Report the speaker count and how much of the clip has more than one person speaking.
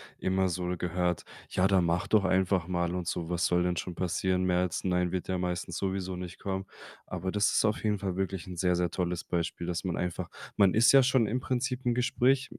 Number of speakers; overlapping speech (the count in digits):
1, no overlap